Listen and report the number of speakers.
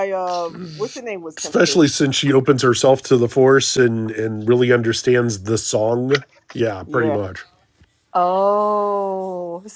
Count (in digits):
3